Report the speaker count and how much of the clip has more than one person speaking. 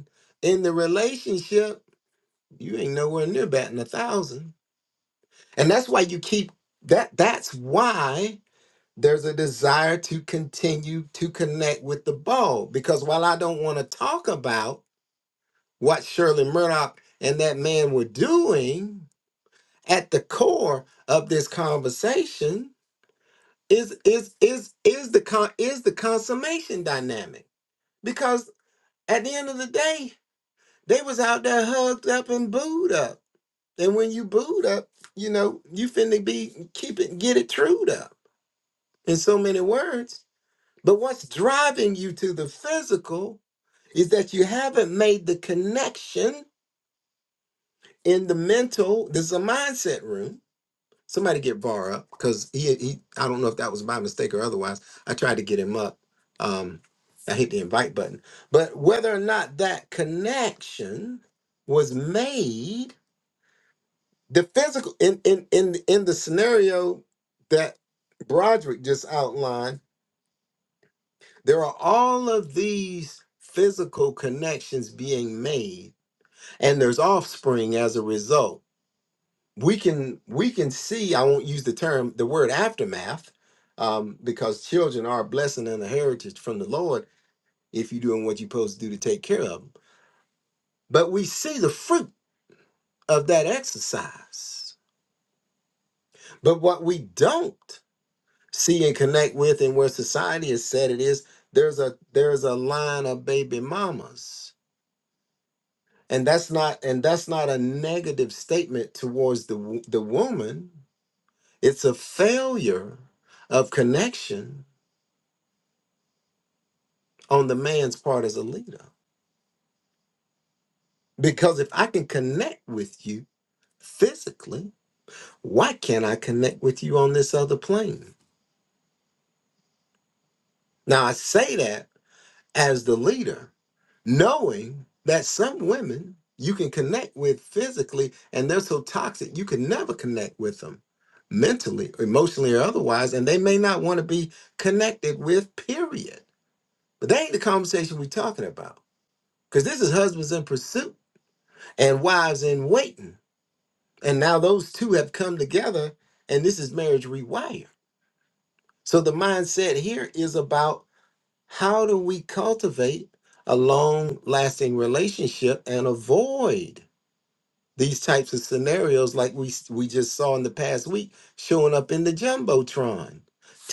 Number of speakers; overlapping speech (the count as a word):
one, no overlap